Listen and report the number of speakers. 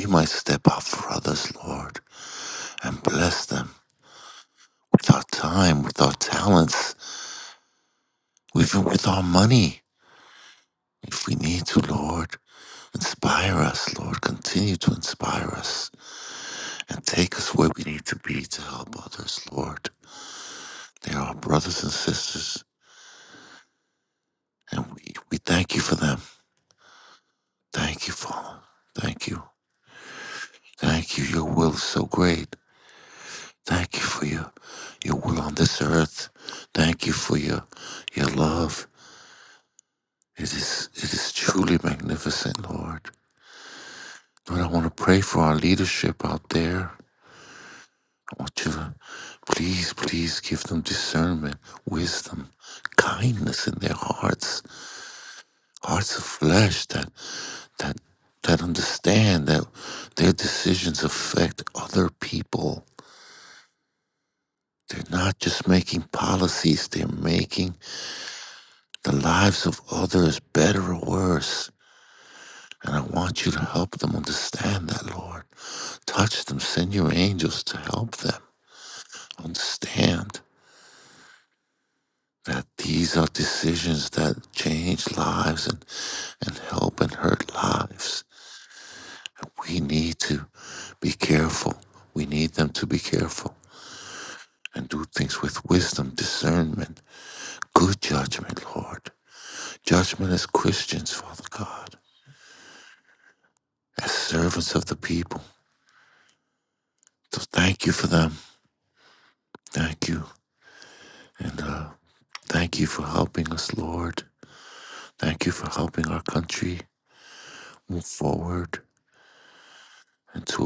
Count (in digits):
1